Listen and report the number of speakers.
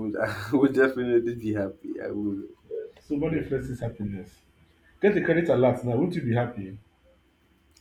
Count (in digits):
2